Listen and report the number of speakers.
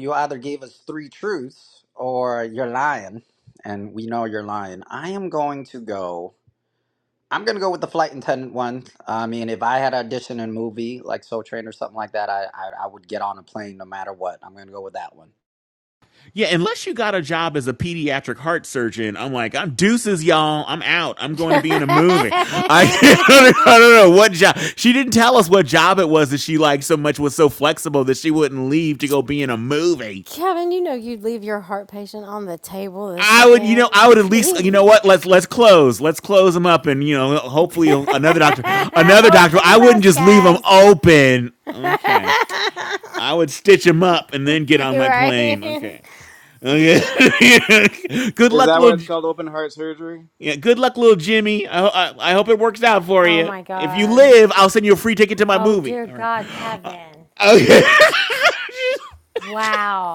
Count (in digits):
4